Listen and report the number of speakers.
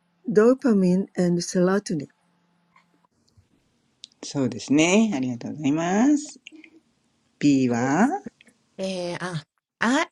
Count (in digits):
3